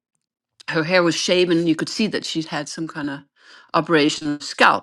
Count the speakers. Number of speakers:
one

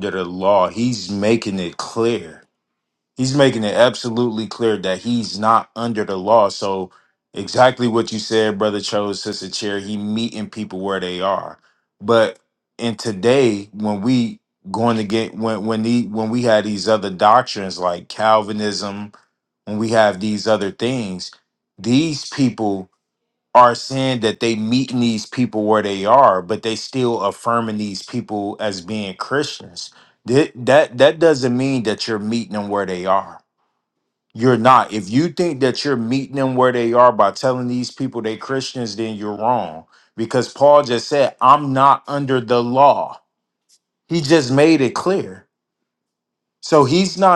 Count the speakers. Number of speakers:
one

